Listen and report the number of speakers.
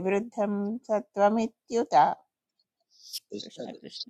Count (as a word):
one